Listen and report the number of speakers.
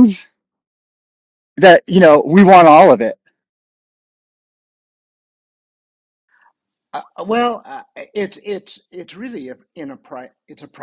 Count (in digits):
2